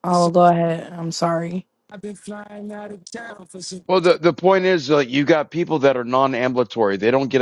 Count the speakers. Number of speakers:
3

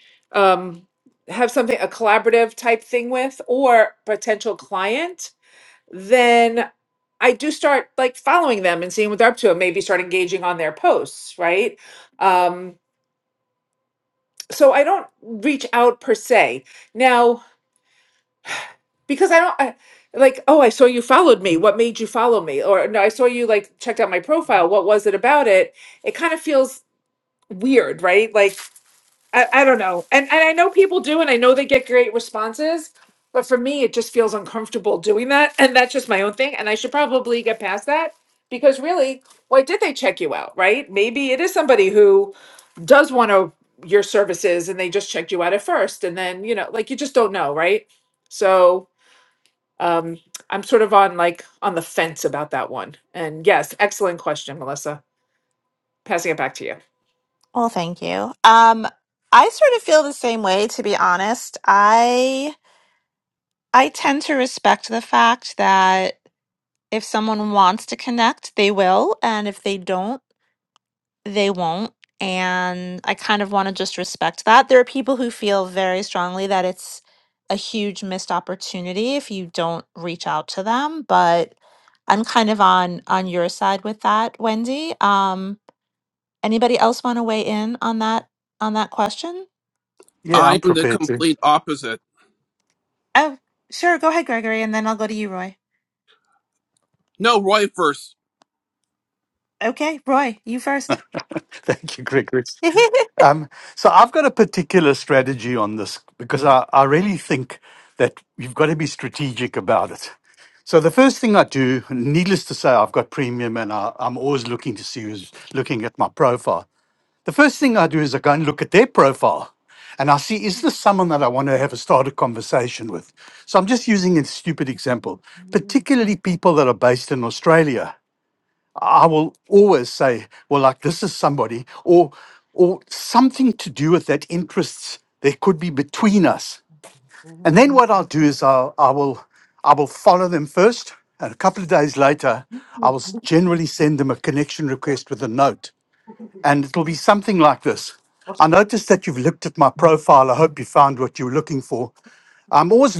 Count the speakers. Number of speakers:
4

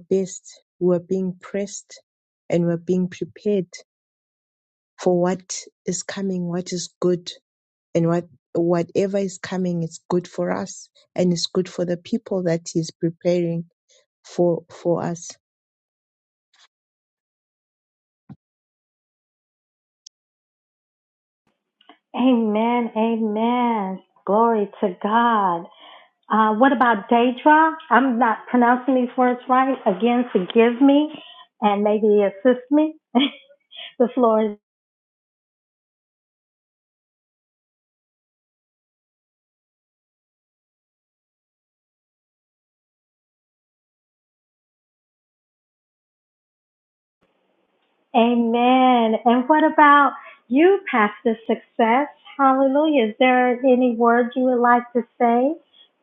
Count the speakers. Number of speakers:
2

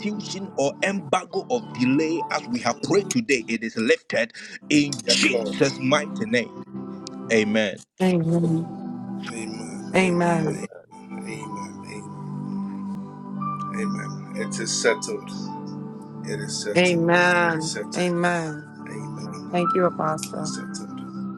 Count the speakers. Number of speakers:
3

